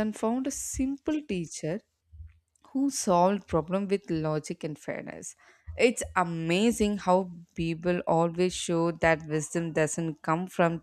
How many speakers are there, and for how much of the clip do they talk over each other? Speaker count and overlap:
1, no overlap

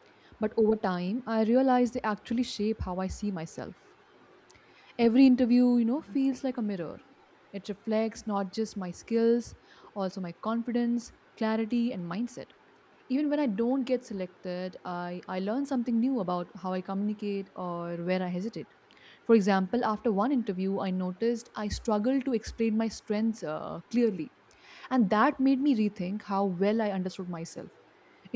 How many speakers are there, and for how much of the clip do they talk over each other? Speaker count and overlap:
1, no overlap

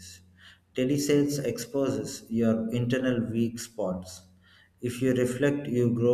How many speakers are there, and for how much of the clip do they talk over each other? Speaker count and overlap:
1, no overlap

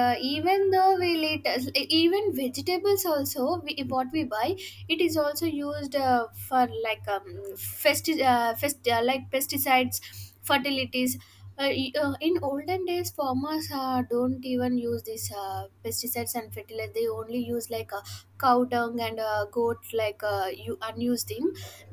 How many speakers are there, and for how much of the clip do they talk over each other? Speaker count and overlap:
1, no overlap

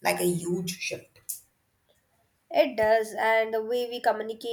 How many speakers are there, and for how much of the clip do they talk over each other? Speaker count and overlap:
2, no overlap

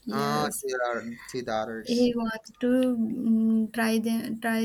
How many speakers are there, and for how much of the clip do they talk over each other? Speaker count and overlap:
2, about 9%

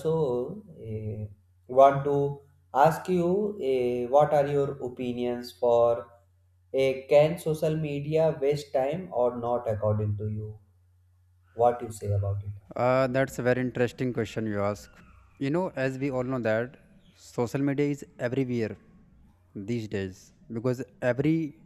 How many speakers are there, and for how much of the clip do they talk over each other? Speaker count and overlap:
2, no overlap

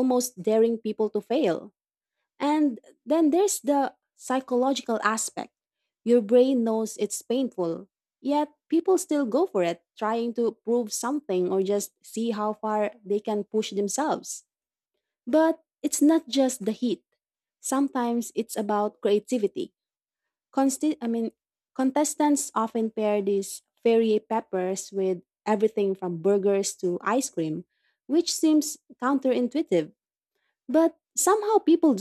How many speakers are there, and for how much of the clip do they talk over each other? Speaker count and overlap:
1, no overlap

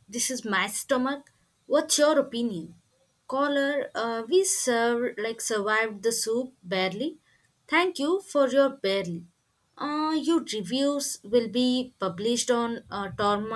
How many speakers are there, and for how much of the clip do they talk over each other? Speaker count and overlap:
1, no overlap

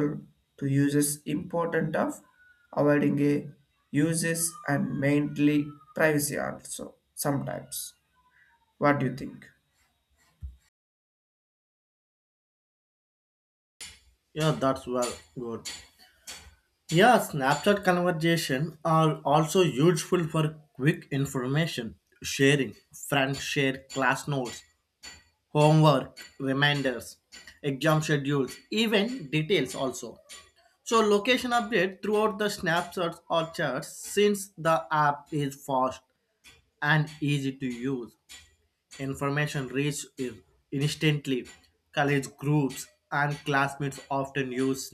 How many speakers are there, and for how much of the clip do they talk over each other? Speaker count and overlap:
2, no overlap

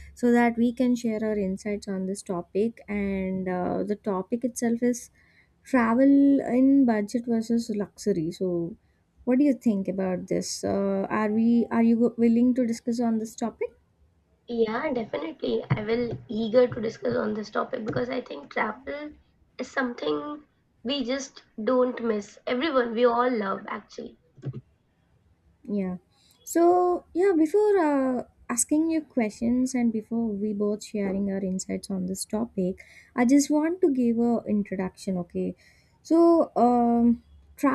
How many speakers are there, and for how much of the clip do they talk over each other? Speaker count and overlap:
2, no overlap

